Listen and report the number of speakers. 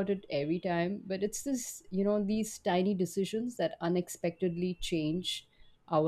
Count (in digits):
1